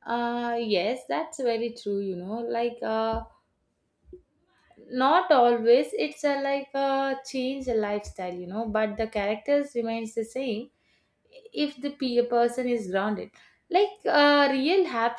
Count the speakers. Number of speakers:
one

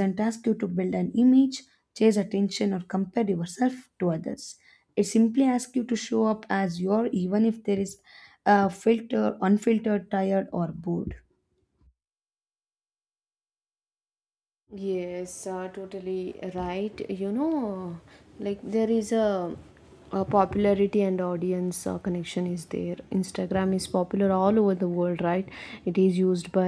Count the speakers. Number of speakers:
two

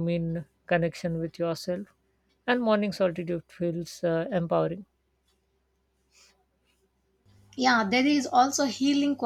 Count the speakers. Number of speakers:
two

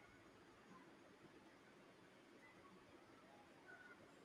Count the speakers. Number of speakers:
zero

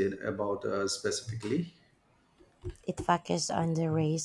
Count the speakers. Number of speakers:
two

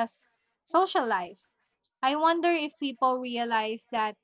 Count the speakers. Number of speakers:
one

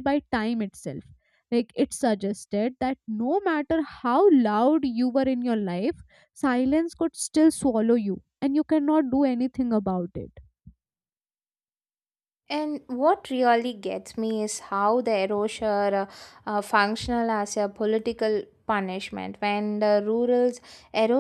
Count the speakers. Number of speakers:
two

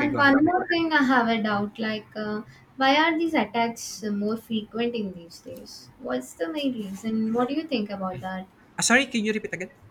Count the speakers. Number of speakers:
two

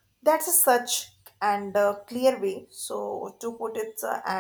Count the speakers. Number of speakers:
one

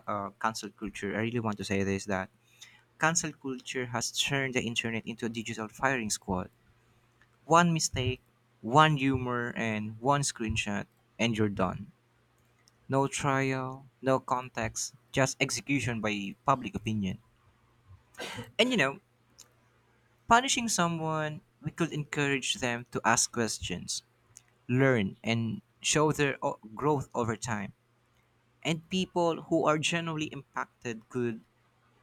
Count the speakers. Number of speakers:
one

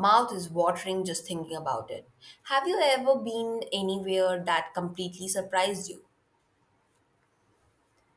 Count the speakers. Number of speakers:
one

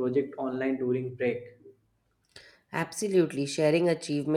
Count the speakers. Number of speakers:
two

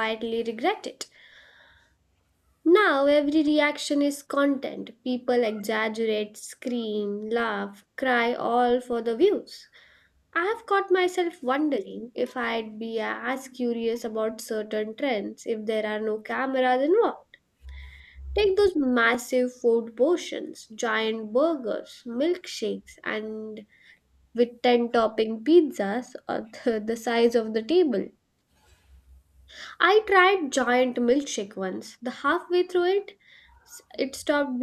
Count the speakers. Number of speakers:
one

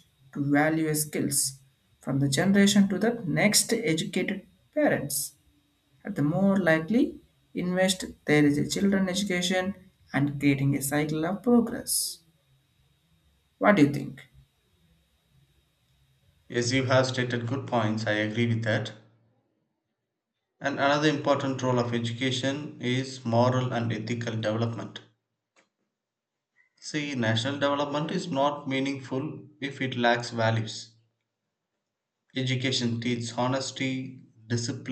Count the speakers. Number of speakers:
two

